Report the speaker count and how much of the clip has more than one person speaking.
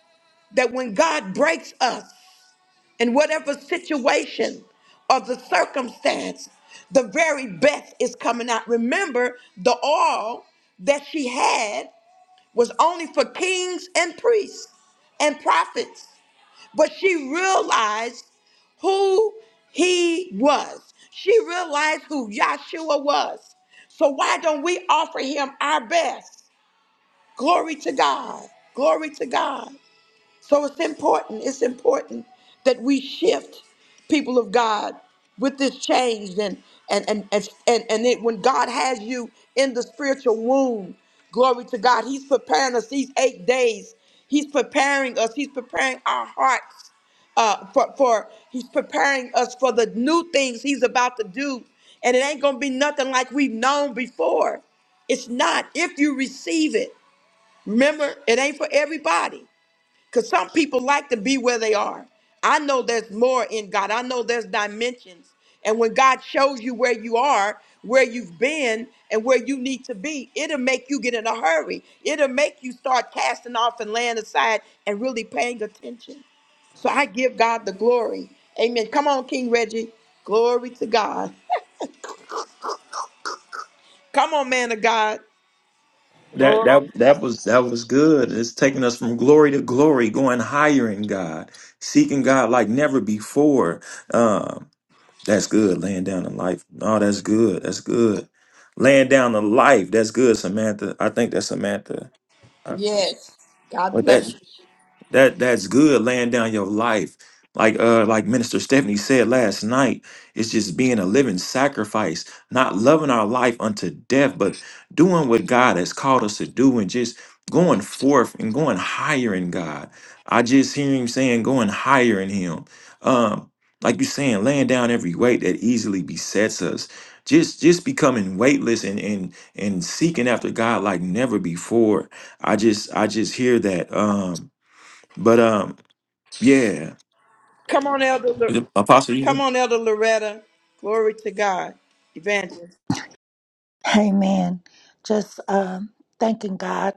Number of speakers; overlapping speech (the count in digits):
3, under 1%